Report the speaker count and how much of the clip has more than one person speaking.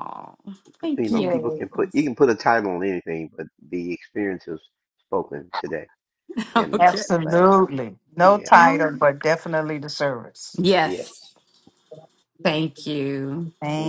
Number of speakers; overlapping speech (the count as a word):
three, about 22%